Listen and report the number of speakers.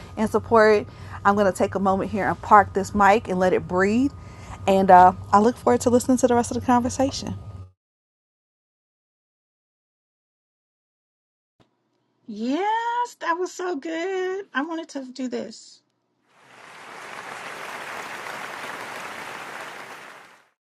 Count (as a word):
two